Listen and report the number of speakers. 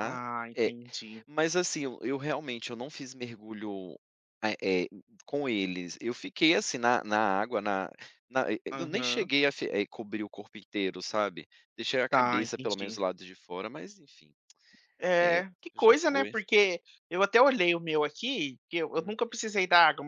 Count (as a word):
two